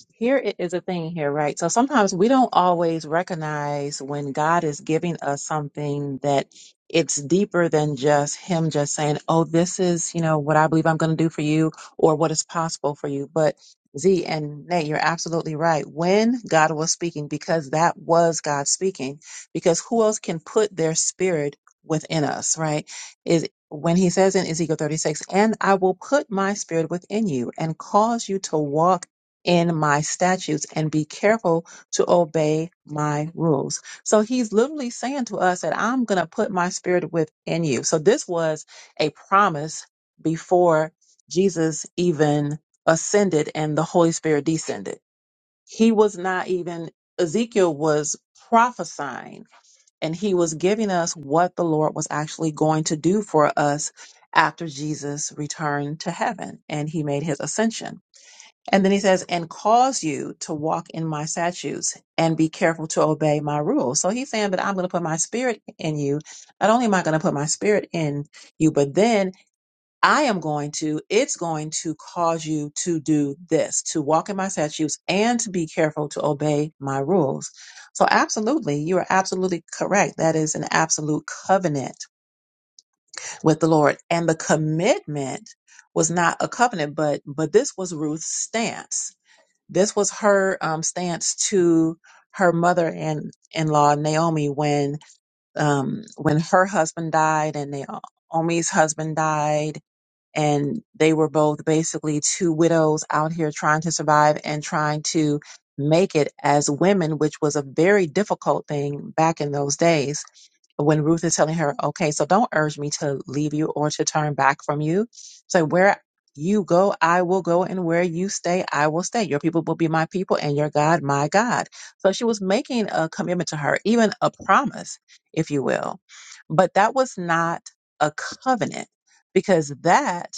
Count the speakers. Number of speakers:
1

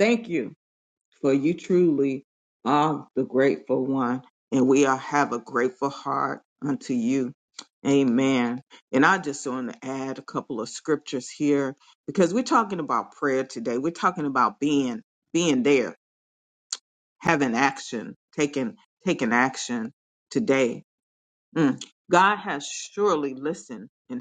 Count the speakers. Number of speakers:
1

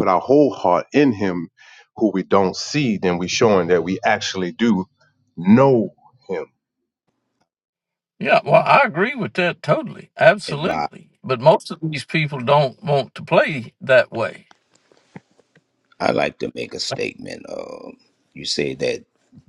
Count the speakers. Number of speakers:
3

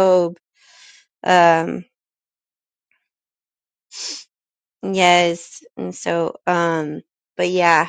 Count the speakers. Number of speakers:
1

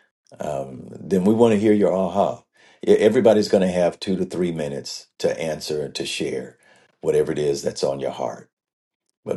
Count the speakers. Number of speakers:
1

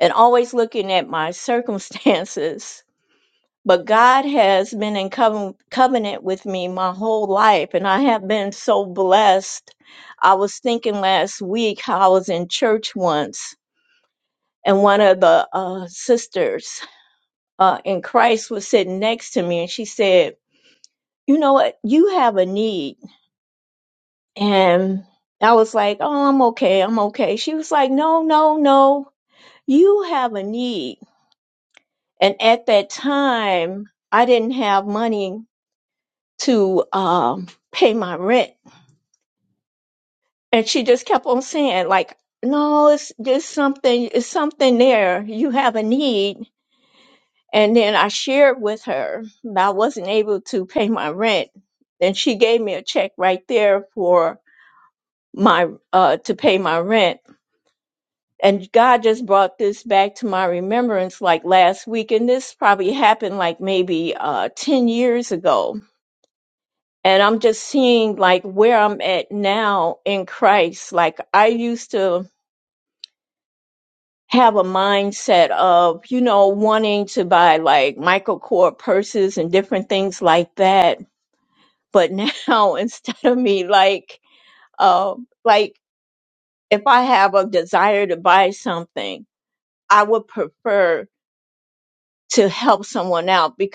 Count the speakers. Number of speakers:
1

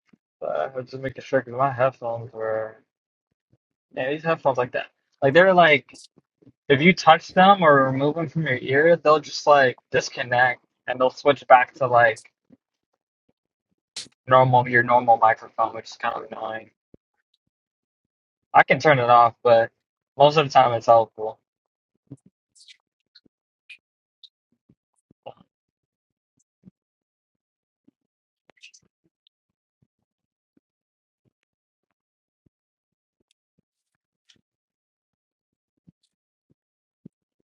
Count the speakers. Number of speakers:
1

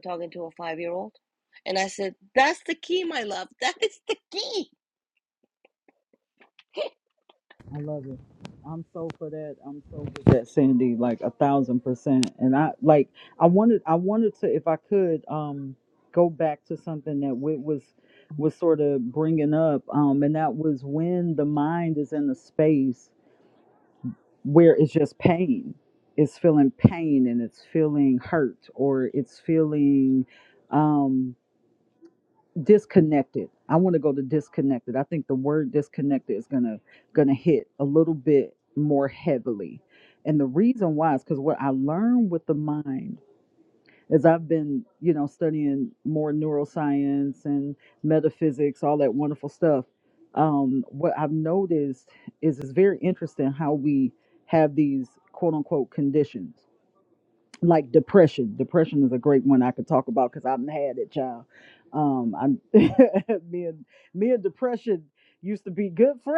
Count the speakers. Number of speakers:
2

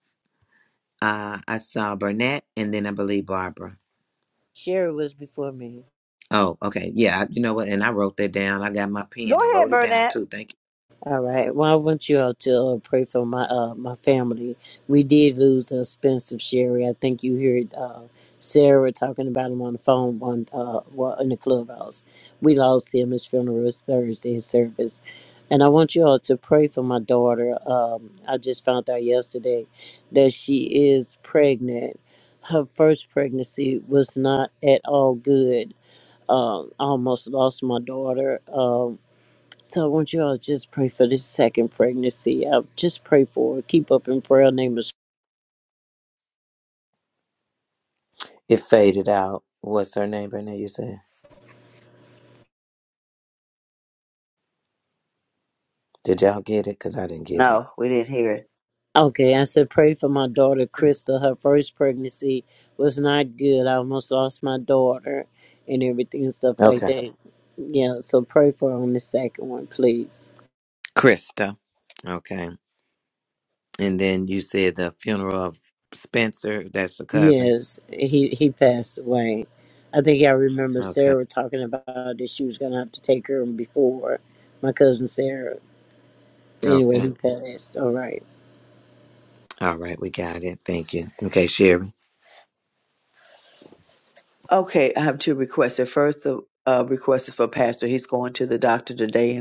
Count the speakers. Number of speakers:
3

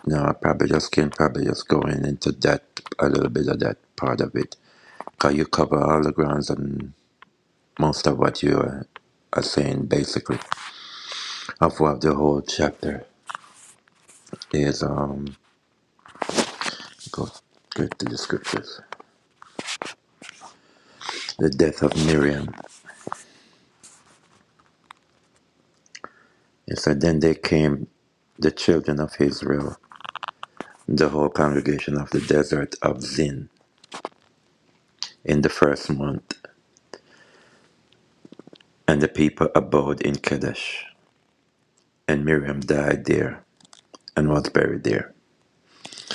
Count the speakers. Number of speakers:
1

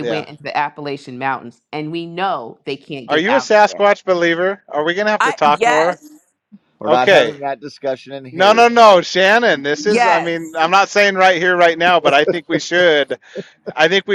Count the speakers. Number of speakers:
3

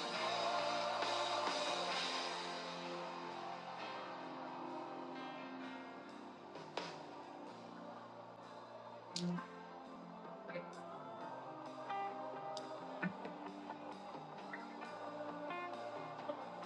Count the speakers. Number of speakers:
0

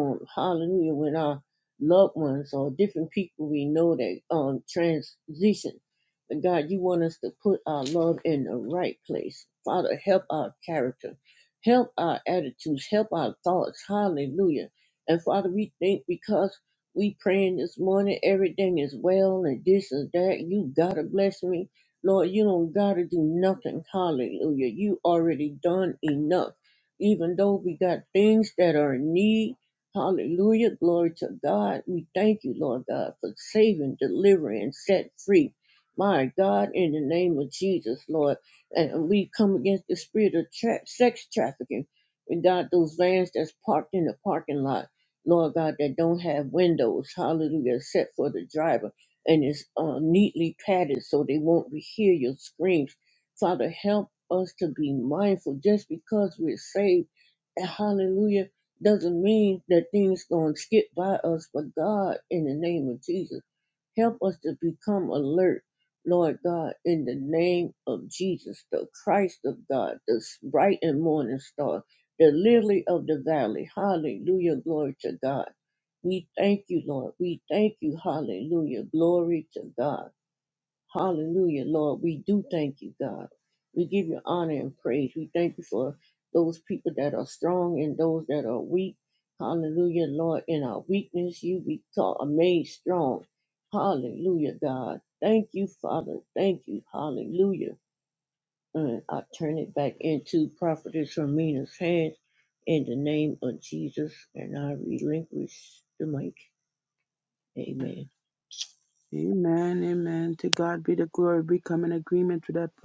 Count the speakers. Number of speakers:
2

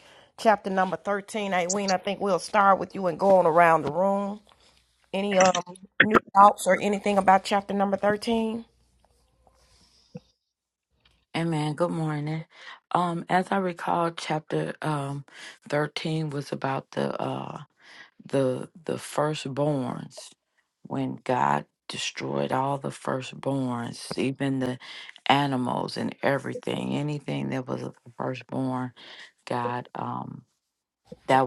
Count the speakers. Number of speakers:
2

